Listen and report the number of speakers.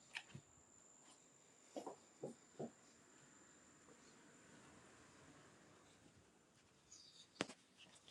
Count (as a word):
zero